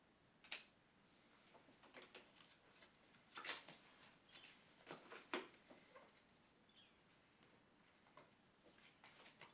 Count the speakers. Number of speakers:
zero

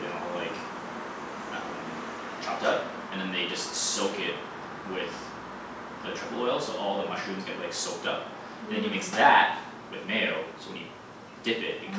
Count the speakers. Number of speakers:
one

